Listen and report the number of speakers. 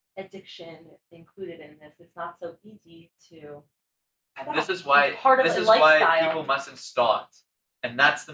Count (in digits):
2